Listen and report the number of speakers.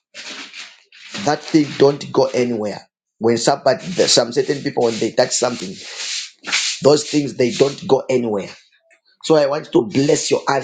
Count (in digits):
1